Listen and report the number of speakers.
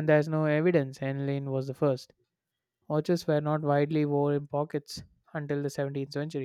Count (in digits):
1